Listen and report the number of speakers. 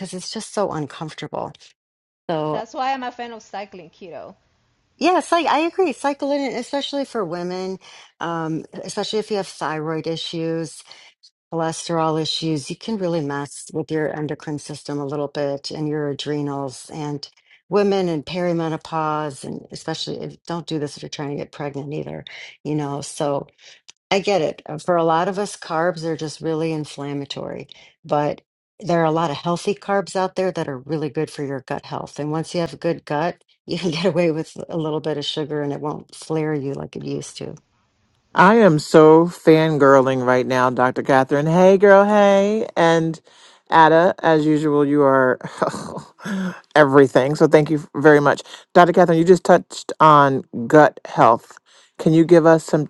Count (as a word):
three